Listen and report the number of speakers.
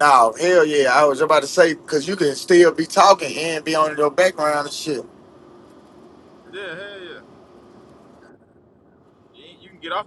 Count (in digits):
2